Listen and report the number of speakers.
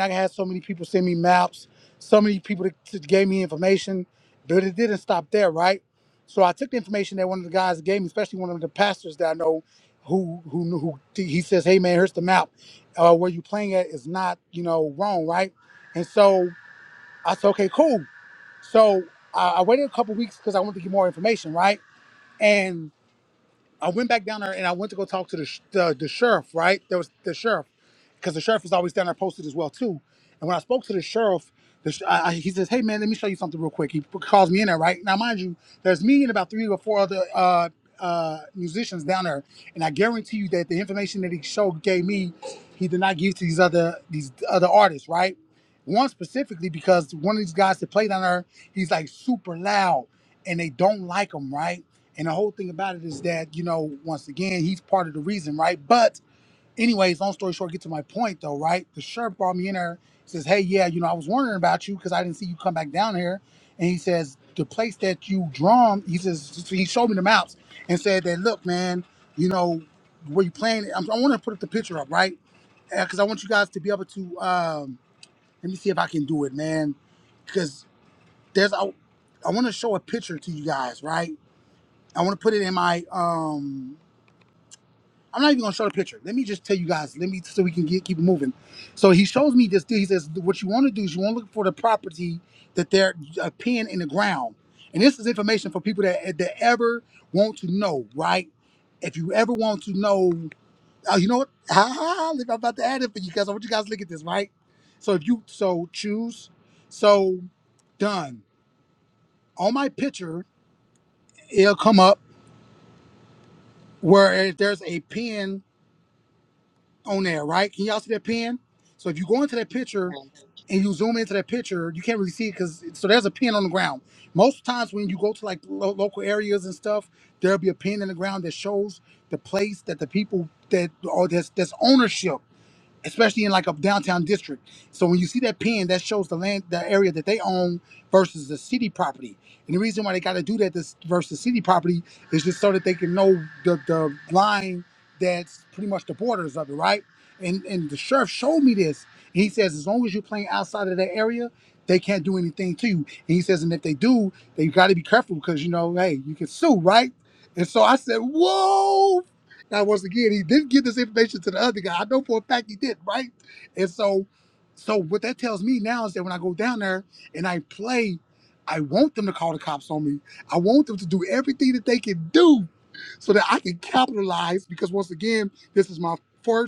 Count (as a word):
one